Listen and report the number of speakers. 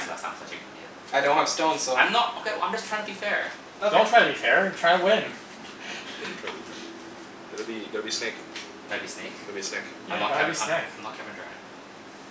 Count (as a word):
four